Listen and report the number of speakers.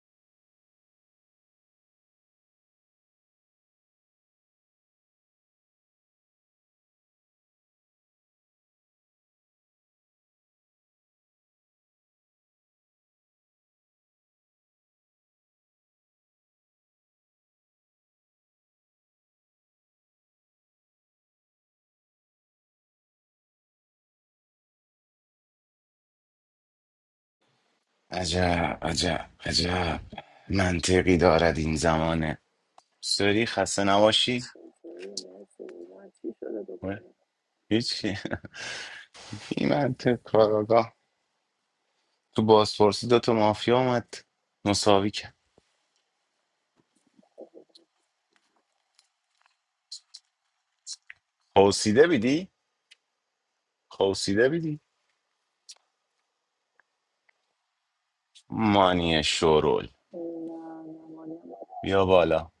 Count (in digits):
2